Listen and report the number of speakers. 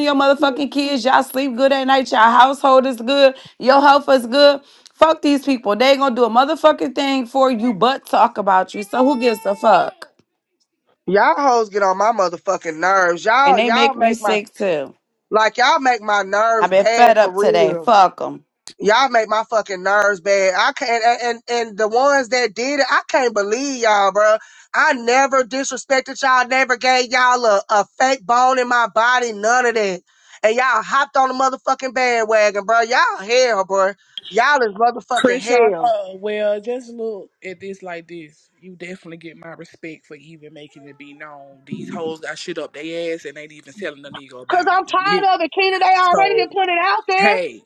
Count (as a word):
three